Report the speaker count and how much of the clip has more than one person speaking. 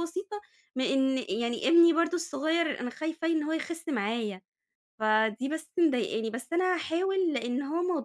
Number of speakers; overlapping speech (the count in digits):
1, no overlap